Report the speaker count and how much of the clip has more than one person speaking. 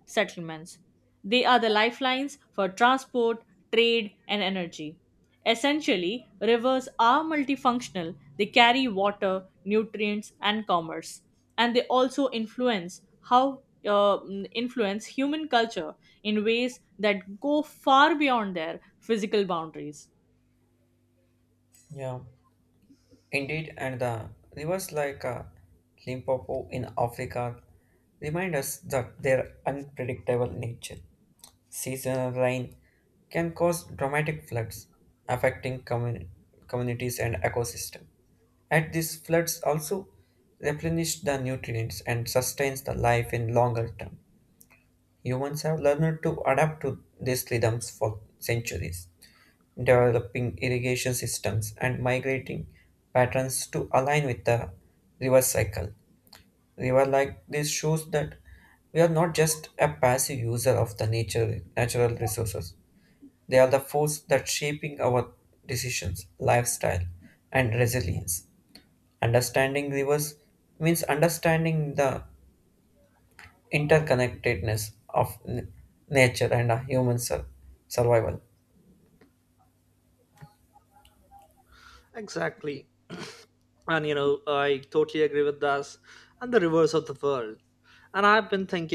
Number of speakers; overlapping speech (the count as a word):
three, no overlap